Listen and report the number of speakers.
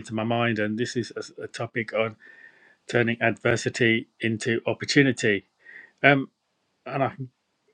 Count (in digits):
1